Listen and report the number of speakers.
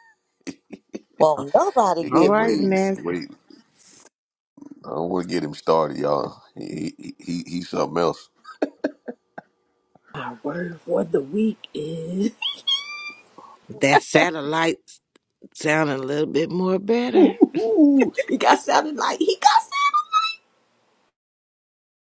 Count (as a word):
four